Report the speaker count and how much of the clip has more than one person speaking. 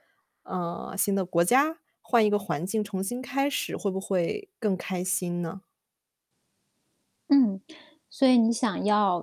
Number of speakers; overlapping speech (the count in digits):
2, no overlap